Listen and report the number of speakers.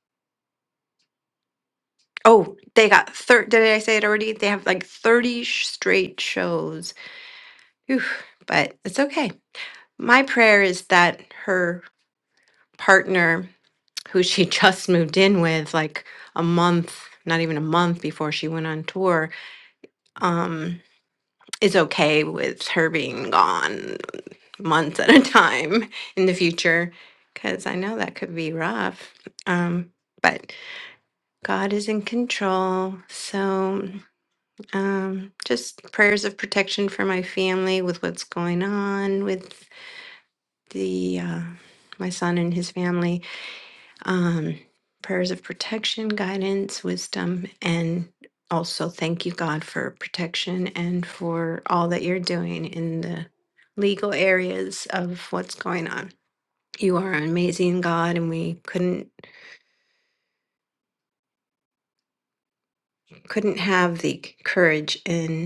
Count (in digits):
1